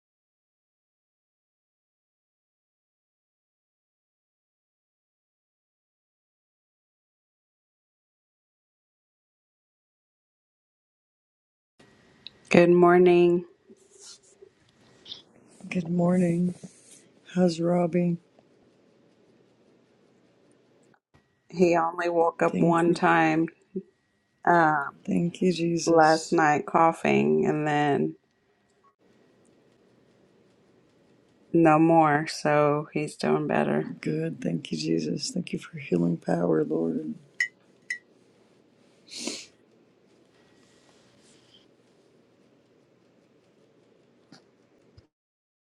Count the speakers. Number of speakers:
2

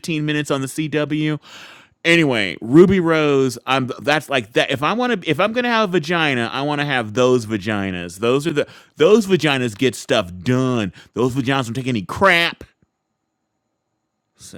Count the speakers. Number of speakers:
1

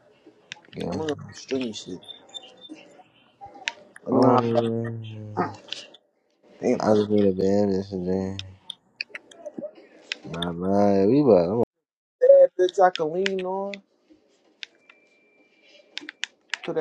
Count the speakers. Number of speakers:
2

